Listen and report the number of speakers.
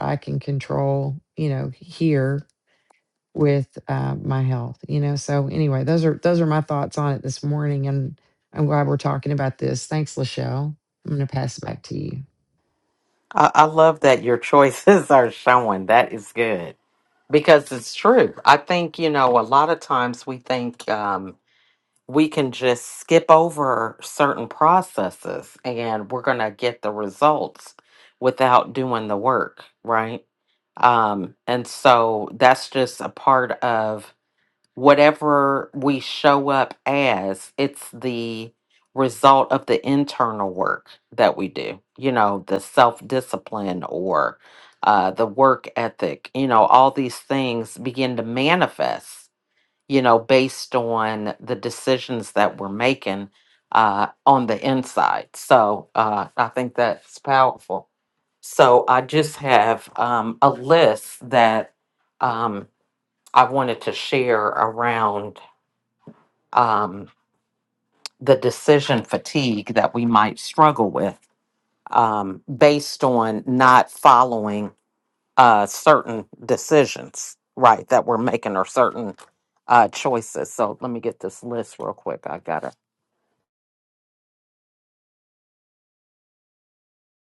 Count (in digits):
2